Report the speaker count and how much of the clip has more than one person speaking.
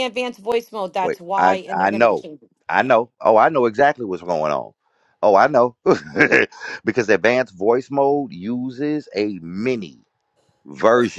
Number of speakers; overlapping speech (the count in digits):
2, about 12%